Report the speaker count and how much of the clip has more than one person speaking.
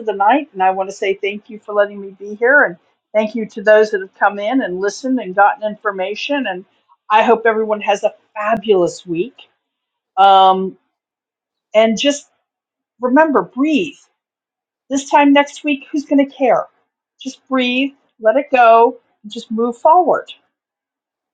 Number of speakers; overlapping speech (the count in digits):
1, no overlap